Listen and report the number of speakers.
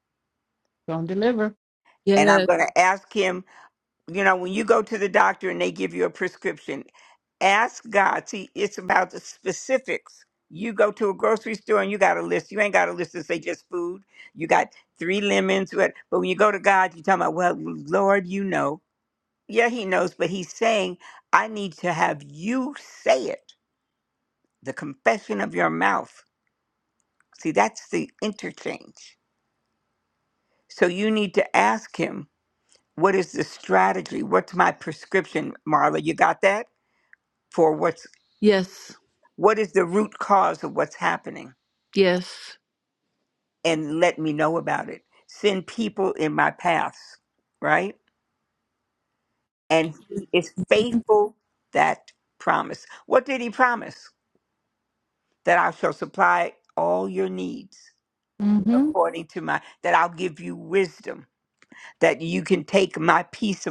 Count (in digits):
3